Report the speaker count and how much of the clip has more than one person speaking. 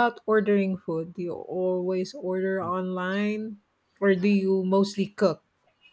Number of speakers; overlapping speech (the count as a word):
one, no overlap